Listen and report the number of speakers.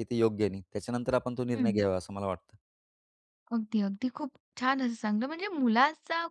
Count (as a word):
two